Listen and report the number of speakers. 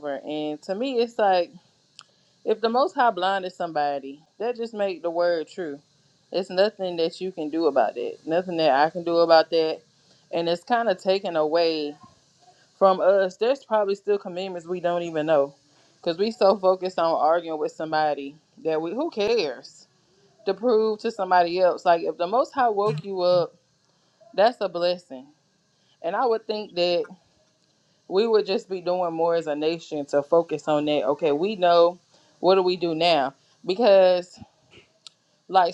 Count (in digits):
1